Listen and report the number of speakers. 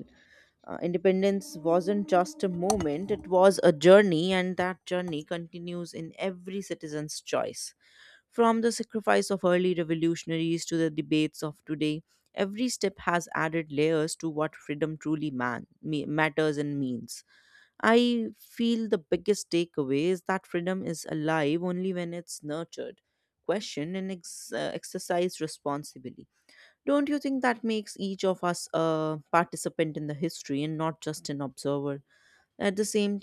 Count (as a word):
one